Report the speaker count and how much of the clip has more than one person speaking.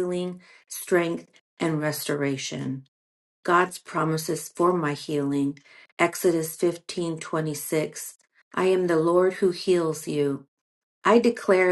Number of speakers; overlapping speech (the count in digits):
1, no overlap